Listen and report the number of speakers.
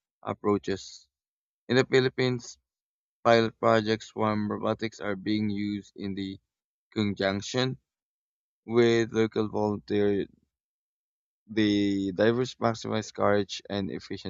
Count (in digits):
1